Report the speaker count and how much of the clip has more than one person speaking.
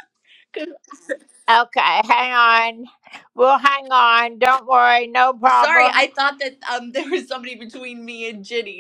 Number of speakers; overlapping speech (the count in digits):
2, about 7%